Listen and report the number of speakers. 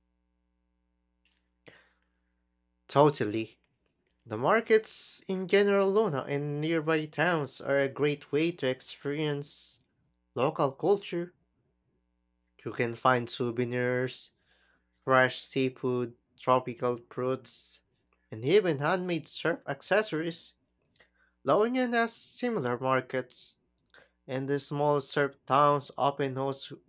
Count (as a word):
one